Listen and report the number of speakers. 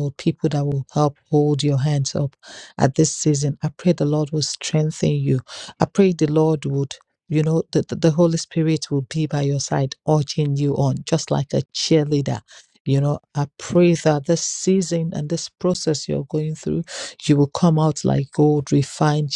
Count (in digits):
1